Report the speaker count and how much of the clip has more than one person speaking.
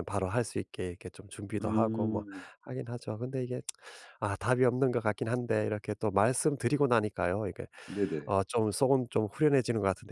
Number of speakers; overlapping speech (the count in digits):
2, about 7%